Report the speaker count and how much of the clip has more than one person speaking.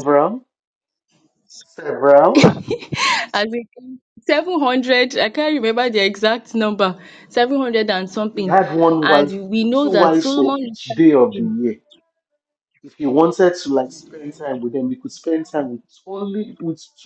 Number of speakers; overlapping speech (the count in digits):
2, about 11%